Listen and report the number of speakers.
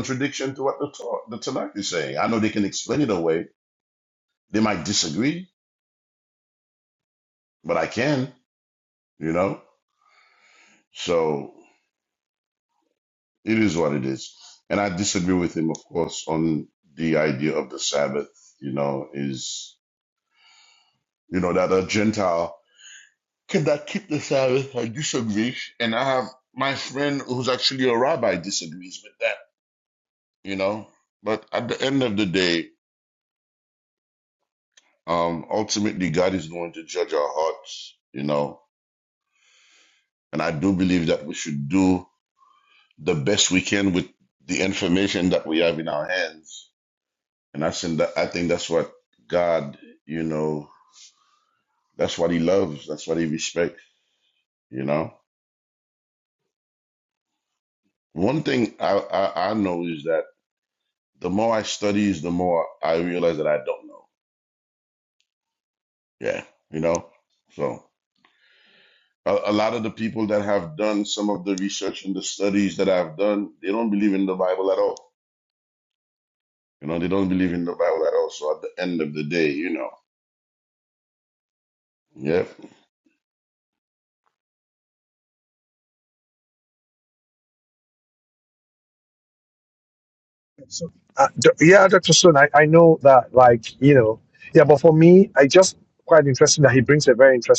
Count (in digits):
2